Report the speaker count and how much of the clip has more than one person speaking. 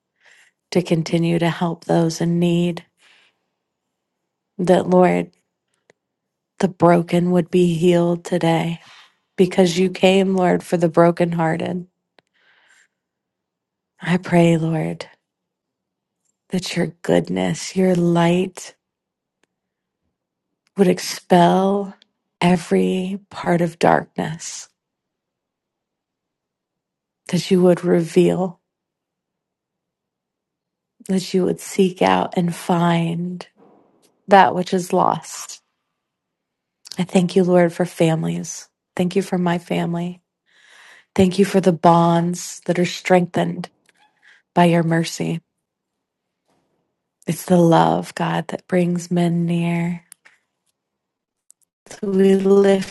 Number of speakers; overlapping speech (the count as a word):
one, no overlap